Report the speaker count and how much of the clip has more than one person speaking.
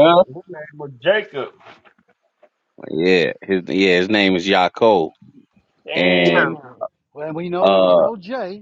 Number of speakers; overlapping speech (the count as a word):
three, about 16%